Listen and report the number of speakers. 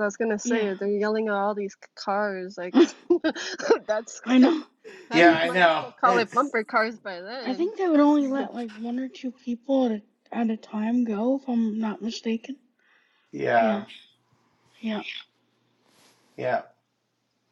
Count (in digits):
3